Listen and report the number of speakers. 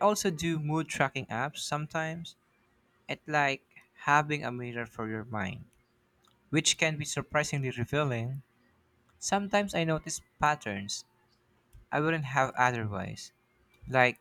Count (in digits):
1